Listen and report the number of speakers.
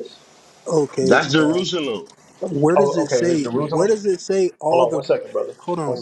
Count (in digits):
3